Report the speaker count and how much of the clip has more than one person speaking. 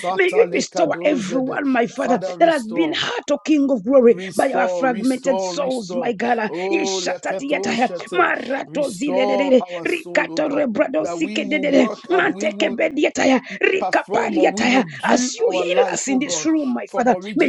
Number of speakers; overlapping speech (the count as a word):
two, about 72%